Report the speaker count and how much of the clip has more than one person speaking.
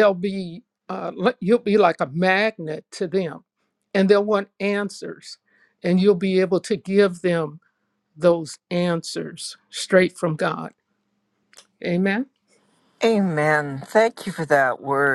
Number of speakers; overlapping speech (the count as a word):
two, no overlap